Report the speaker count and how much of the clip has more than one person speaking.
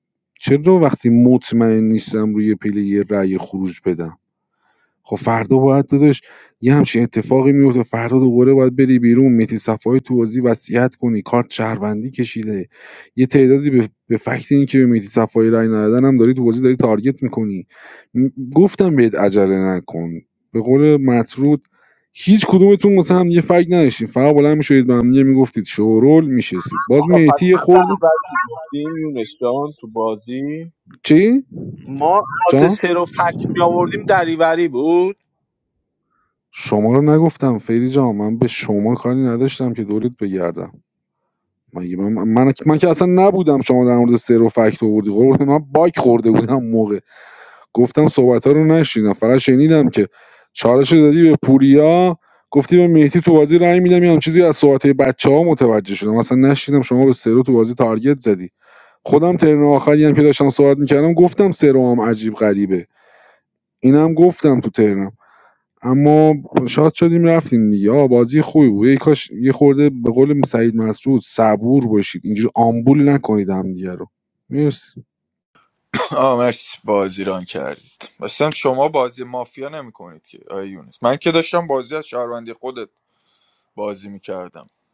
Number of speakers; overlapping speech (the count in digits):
3, about 1%